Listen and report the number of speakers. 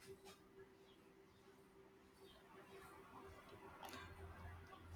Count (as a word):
zero